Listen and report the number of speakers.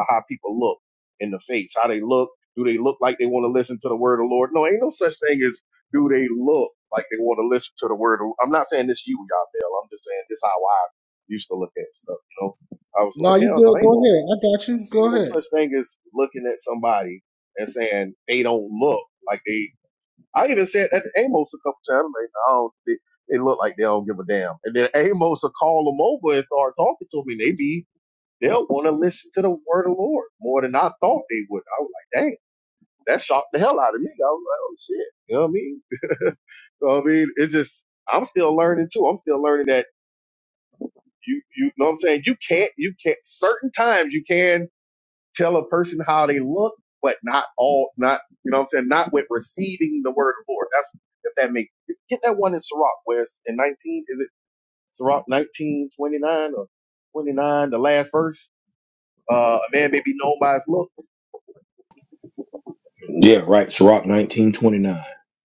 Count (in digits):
3